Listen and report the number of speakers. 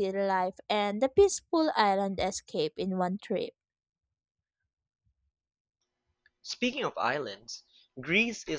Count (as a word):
two